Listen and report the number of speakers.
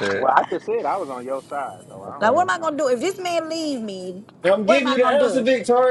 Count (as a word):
three